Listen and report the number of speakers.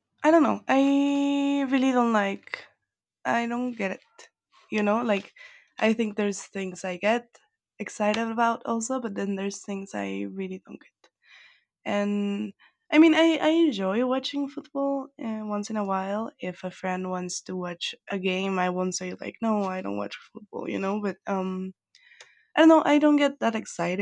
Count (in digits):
1